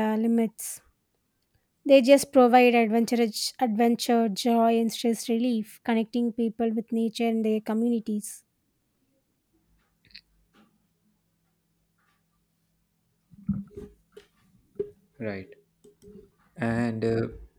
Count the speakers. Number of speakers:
two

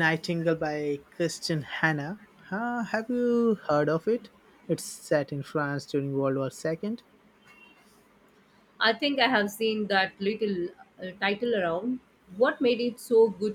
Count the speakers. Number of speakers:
two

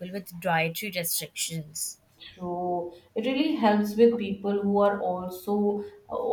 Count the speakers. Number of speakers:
two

